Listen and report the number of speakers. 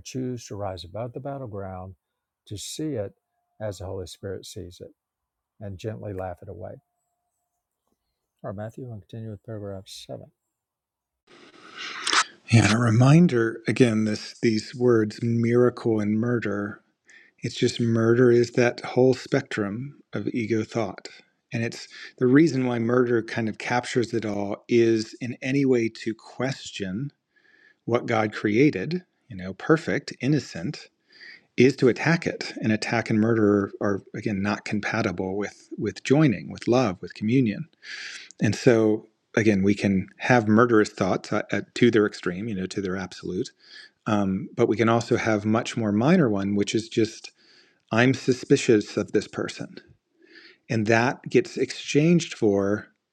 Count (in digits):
2